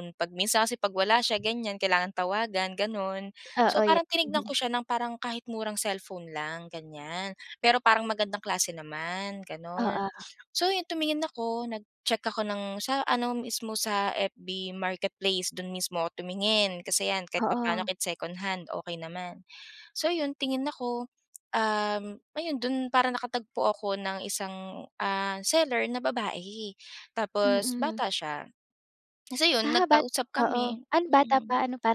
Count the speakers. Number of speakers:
2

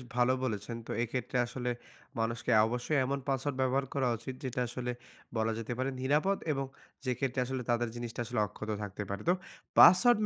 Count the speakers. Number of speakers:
1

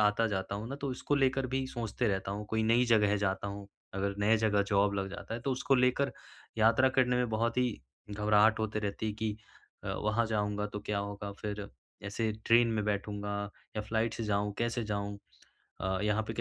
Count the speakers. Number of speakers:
1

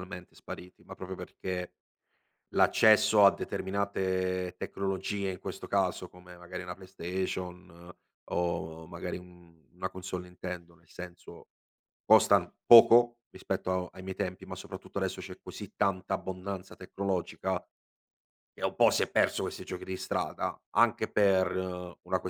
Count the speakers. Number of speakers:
1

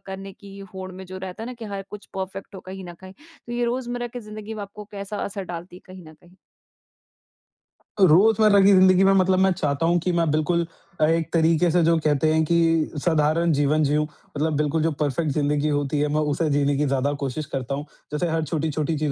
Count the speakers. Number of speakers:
2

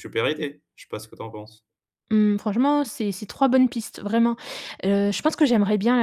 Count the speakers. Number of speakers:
2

